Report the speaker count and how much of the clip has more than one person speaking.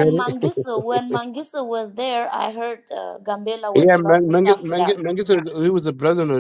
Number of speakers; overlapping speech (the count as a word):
two, about 25%